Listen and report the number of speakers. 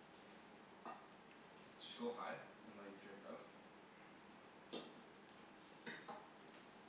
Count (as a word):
one